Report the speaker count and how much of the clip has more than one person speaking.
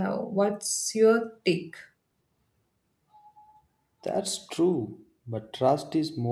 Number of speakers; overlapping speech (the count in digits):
2, no overlap